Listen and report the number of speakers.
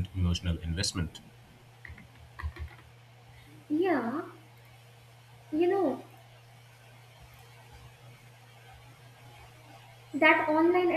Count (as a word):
two